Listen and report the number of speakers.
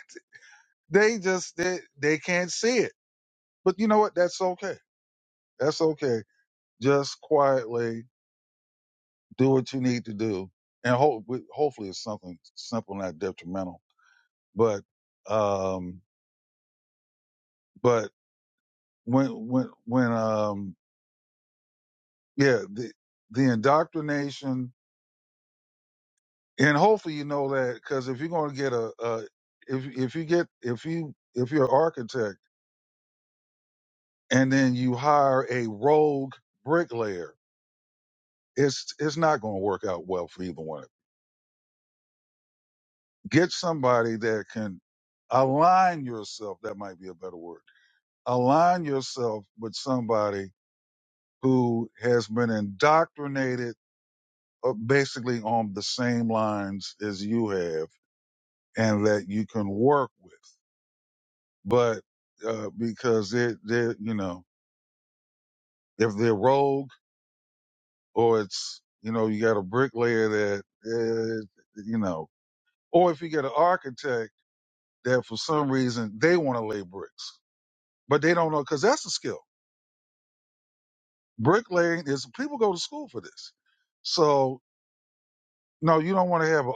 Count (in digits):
1